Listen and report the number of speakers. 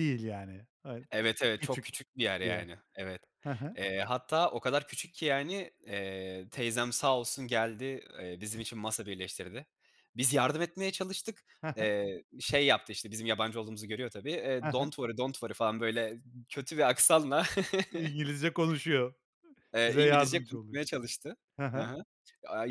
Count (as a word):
two